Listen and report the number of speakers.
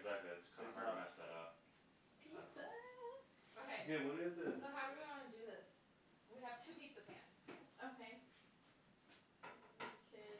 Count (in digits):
4